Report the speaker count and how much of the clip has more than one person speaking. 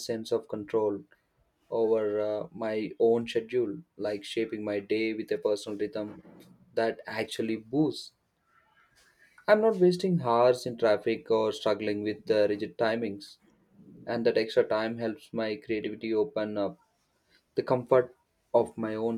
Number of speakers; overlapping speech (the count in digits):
1, no overlap